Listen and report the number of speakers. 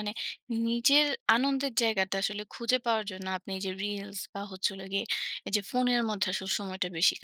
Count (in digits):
1